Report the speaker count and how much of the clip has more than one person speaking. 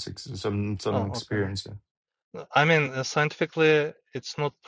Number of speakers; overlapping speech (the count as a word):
two, about 12%